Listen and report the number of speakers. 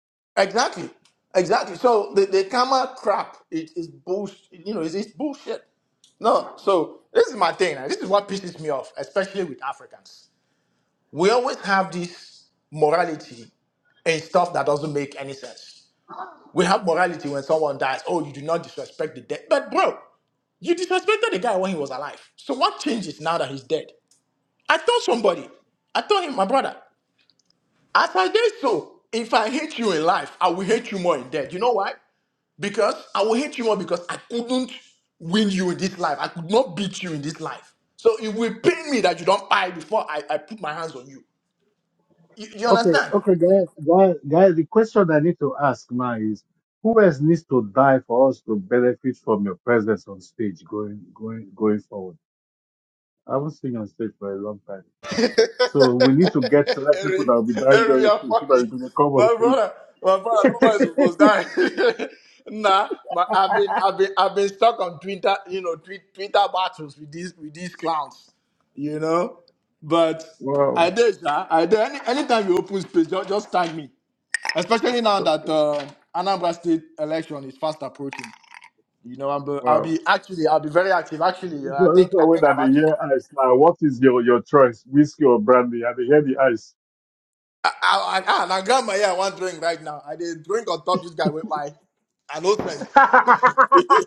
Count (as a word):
two